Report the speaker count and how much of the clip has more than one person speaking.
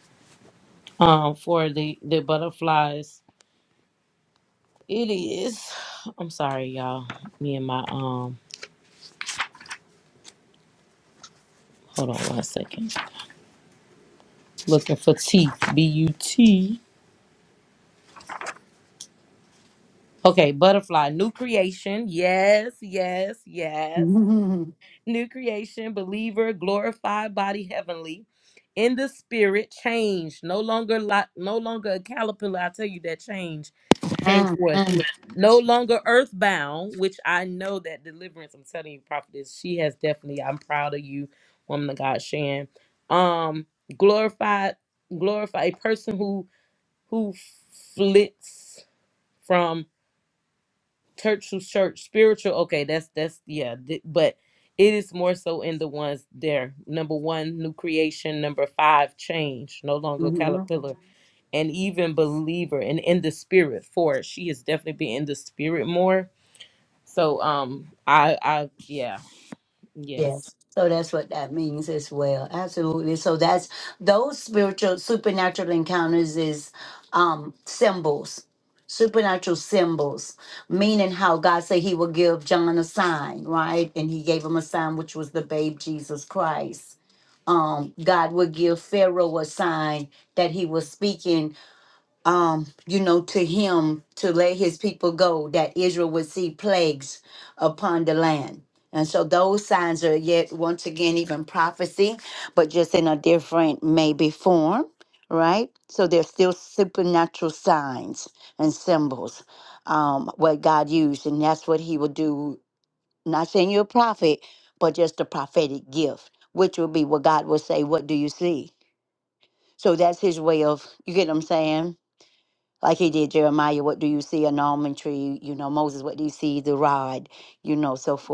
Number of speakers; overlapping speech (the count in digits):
2, under 1%